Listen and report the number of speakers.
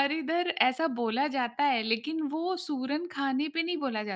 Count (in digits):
1